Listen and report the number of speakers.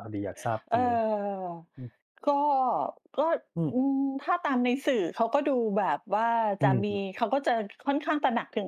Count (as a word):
two